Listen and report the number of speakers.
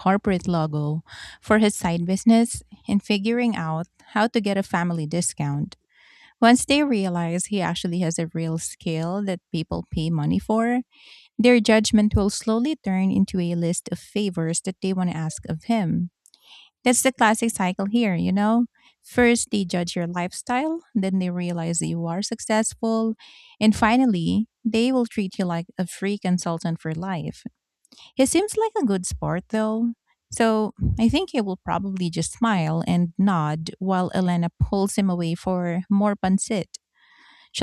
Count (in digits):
1